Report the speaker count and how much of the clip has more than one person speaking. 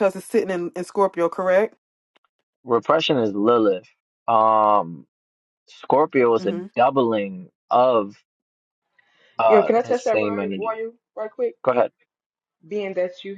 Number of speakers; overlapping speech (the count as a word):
three, about 11%